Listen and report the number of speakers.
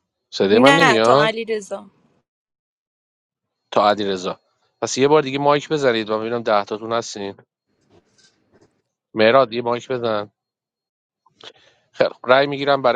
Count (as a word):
two